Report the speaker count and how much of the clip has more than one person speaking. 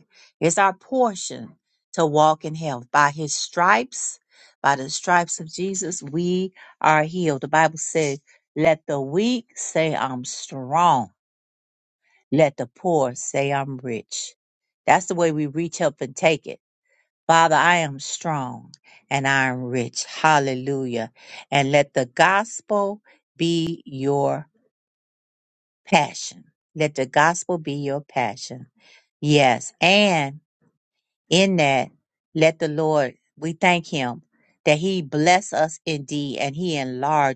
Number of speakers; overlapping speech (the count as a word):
one, no overlap